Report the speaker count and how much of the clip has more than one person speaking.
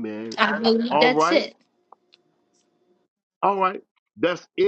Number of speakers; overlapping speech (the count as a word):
two, about 13%